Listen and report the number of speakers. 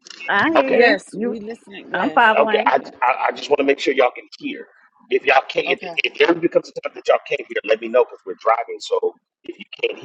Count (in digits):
3